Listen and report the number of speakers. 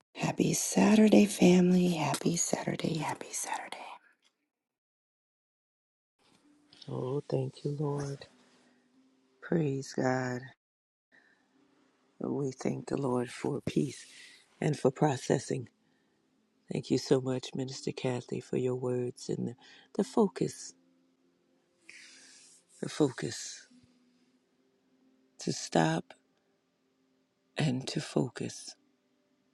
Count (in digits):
2